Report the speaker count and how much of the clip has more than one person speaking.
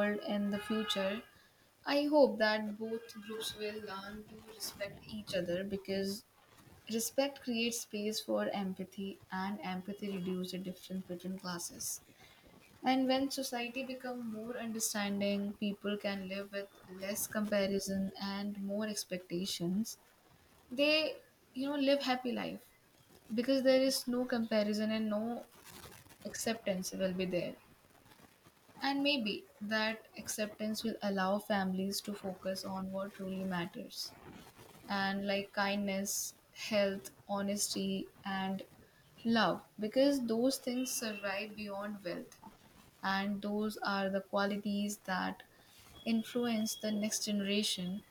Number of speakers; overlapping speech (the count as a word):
one, no overlap